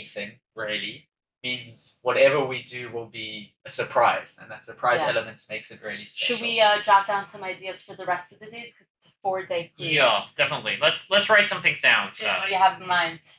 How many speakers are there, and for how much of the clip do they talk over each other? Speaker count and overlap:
three, about 9%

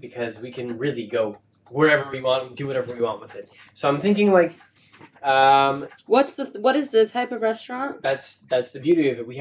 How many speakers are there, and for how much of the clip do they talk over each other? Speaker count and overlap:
two, no overlap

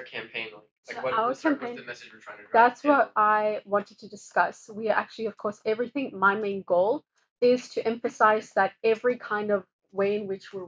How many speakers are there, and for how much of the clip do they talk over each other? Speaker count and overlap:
two, about 16%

